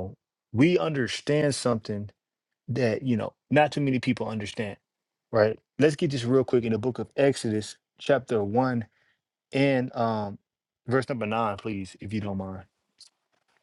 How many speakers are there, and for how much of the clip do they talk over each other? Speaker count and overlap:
one, no overlap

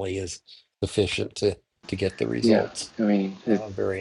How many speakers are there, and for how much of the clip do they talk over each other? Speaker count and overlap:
two, about 18%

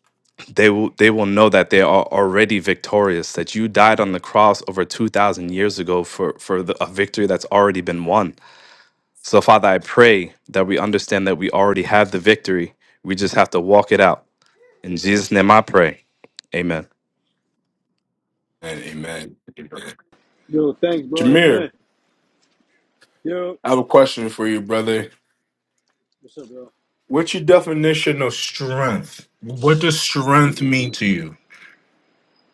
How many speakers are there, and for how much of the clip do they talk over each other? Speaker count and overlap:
three, about 2%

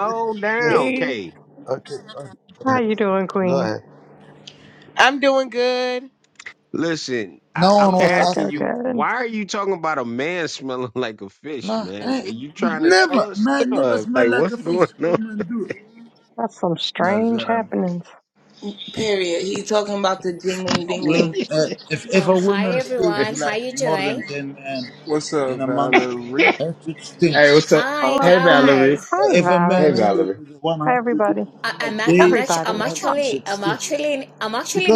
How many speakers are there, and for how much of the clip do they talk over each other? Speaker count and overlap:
seven, about 40%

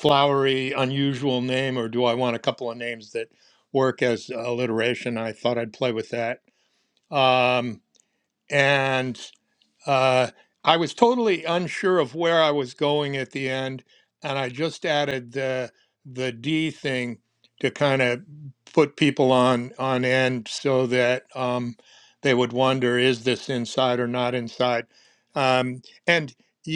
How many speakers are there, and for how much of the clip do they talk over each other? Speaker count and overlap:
one, no overlap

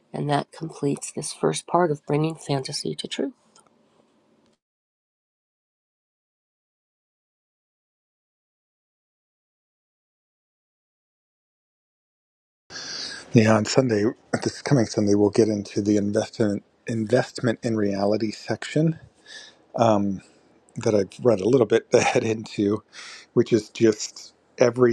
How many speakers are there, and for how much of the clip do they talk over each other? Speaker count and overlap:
two, no overlap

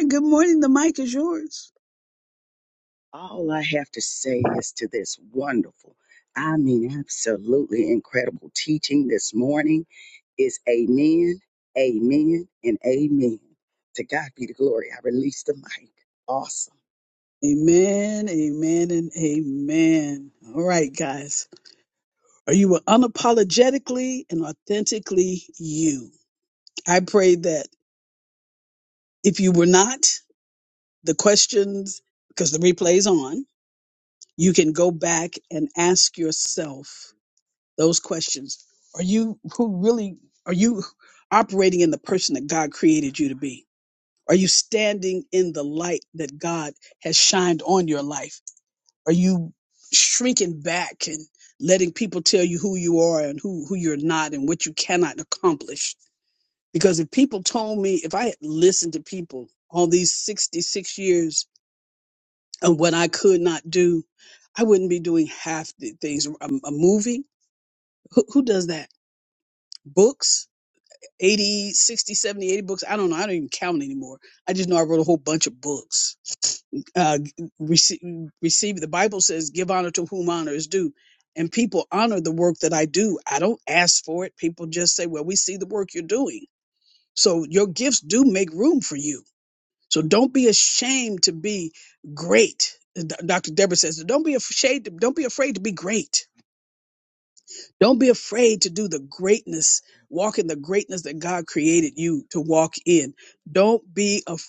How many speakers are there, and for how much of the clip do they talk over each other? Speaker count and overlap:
two, no overlap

